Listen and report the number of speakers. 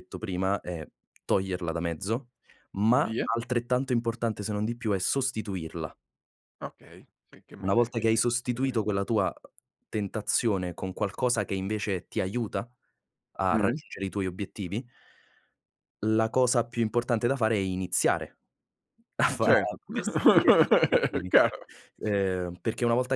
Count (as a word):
two